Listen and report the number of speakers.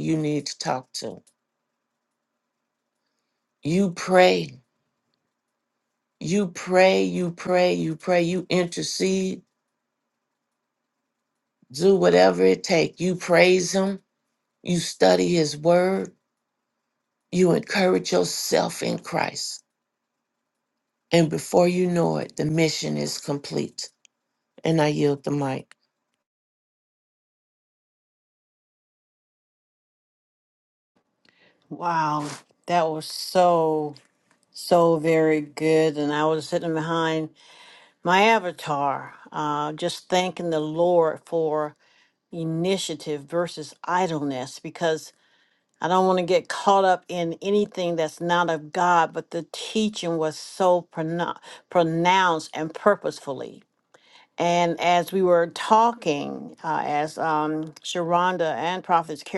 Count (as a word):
two